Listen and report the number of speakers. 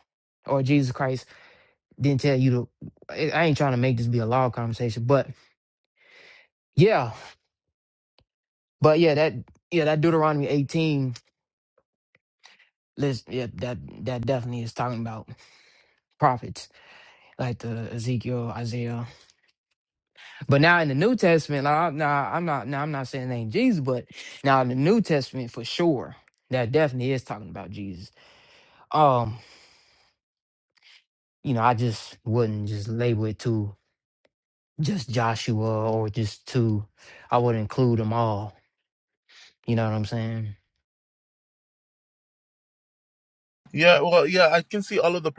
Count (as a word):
two